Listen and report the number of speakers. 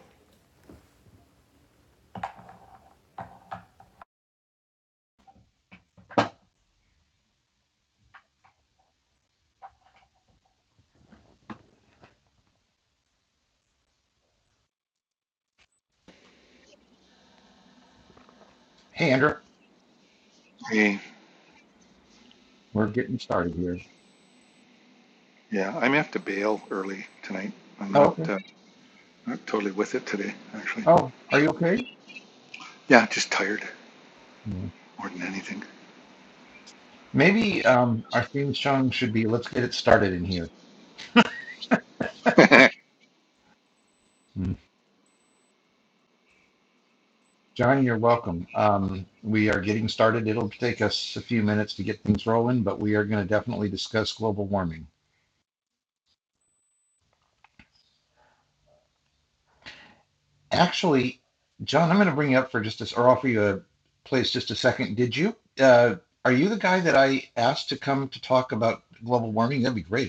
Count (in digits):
2